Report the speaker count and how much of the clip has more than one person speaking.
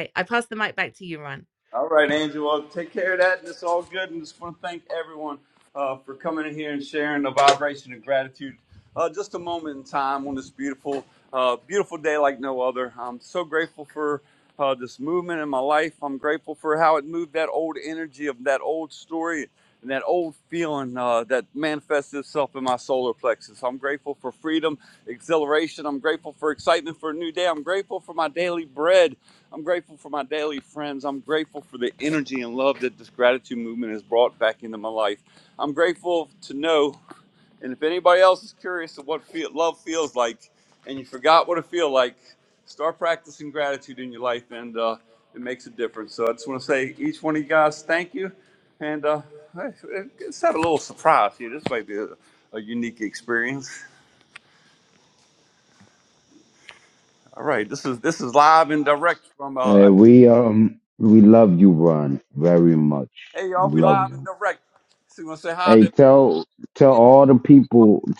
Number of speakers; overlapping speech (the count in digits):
3, about 1%